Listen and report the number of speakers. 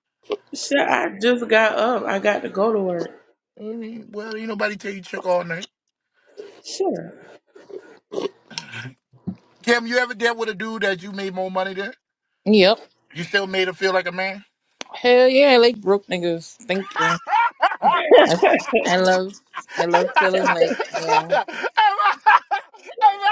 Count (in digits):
3